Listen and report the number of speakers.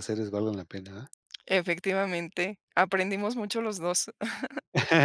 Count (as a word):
two